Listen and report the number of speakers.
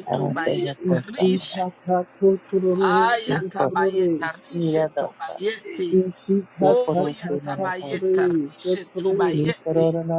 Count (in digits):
3